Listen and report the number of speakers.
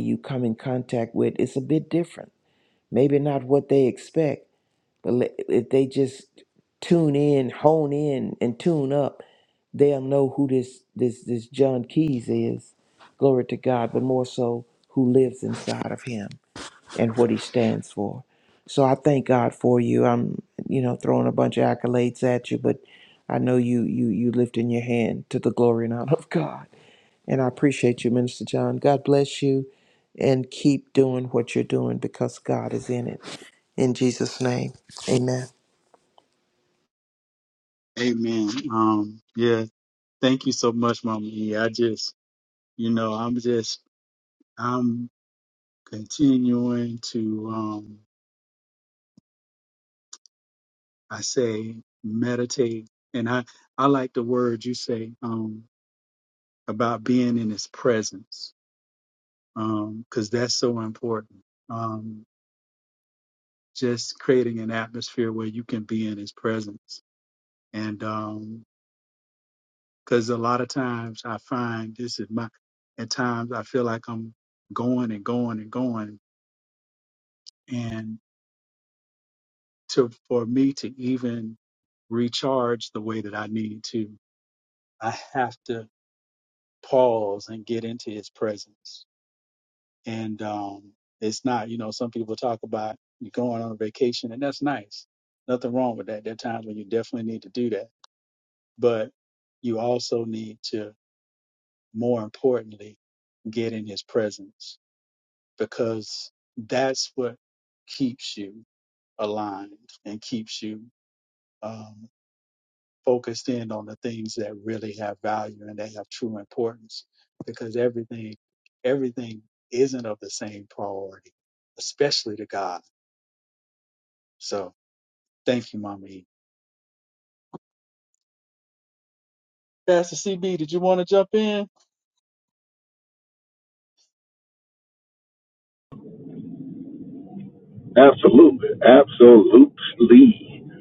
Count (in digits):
3